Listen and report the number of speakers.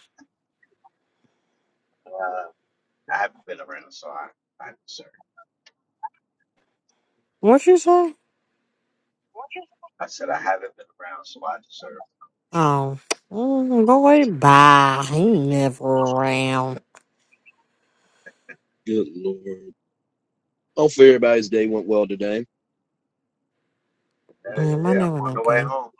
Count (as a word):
three